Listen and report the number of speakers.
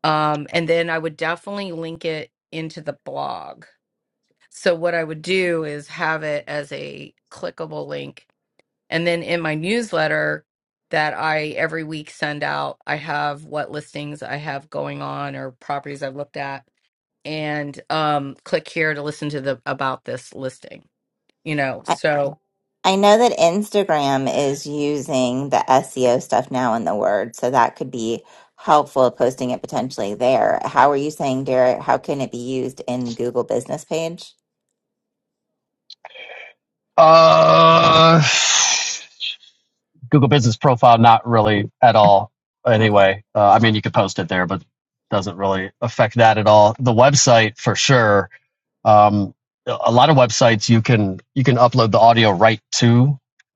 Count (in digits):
3